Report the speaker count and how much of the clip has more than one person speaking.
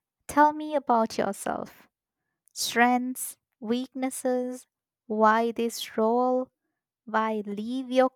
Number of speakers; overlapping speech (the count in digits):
1, no overlap